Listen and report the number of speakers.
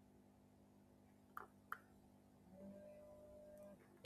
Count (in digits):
0